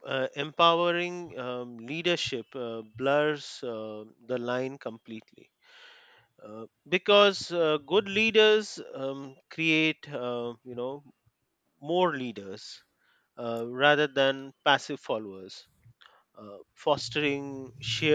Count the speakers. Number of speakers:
1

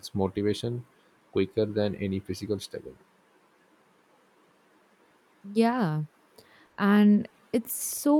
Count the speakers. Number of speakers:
2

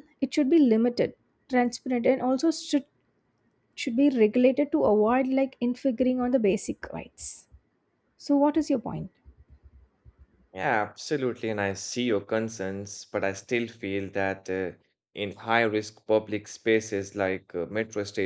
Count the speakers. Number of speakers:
2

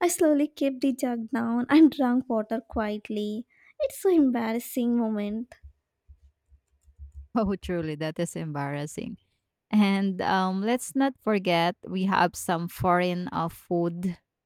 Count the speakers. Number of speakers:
2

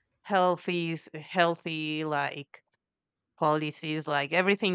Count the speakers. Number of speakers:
1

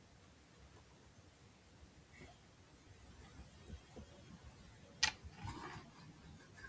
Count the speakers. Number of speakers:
0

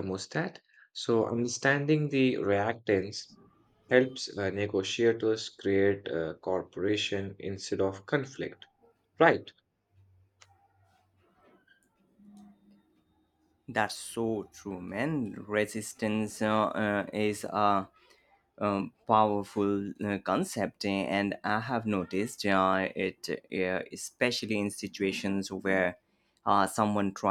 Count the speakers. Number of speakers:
2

